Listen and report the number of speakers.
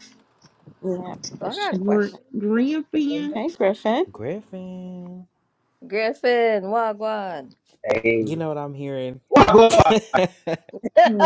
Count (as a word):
five